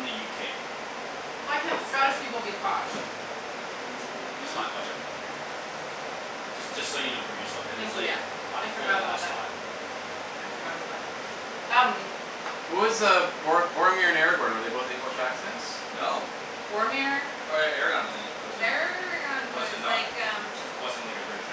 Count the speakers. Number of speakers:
four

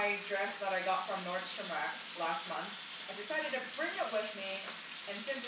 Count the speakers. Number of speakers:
one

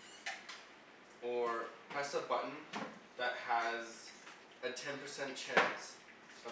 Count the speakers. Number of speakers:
one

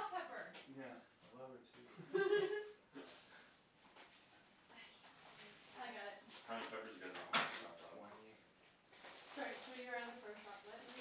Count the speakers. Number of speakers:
four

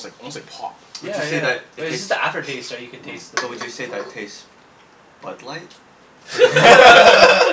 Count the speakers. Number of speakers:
three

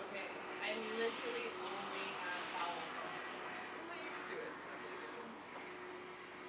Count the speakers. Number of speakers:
two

